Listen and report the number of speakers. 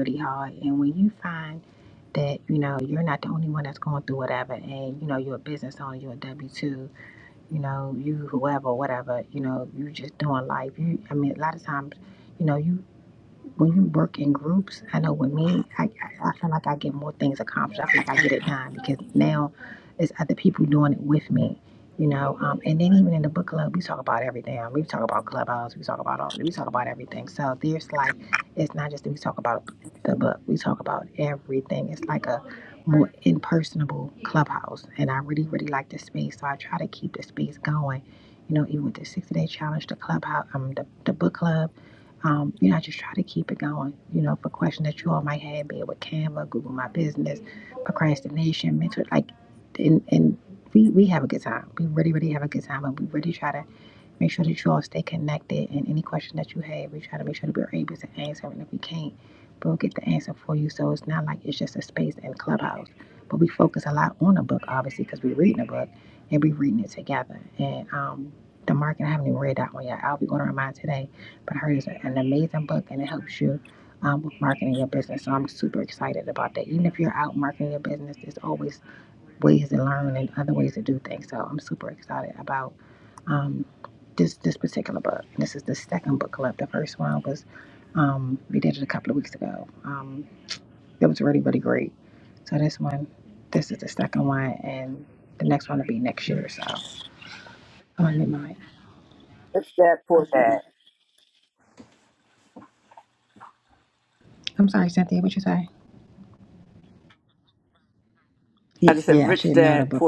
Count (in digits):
2